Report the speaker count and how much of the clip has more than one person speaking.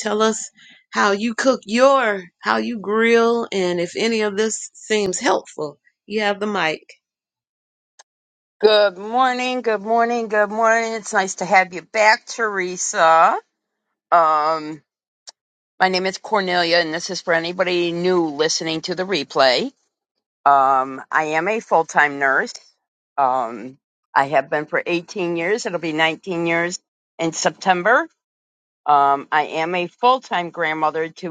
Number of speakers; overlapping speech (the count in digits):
2, no overlap